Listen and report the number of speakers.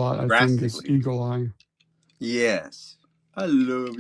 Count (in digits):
2